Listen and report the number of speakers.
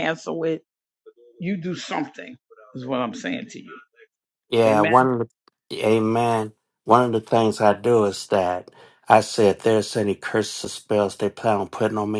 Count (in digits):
2